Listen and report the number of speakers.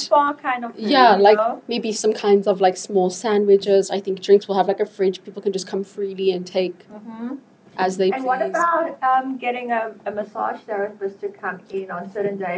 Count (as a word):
two